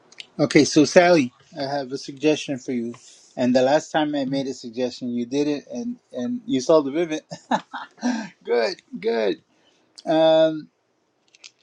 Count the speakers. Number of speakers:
1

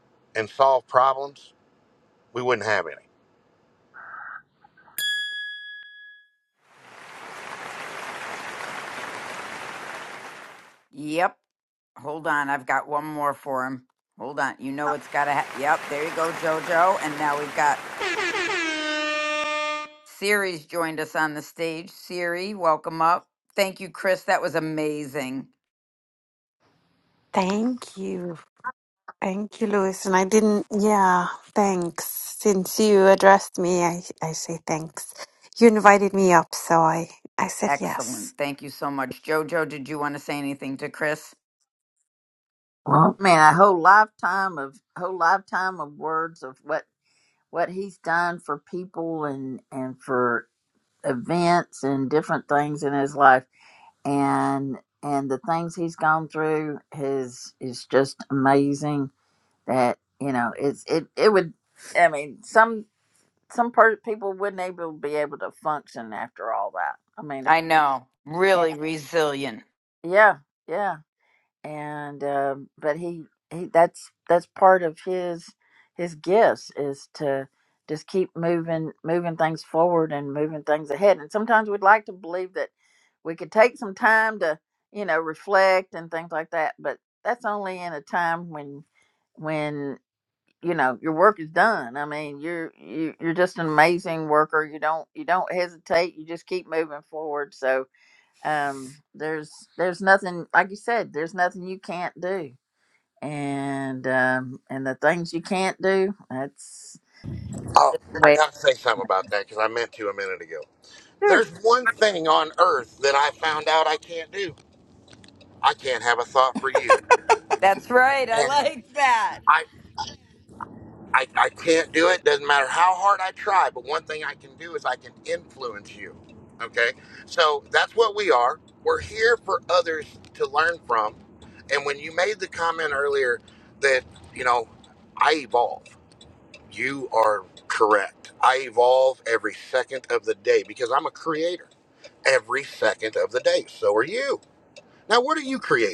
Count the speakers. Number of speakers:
4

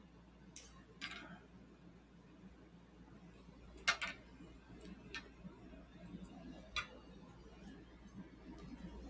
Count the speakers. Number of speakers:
0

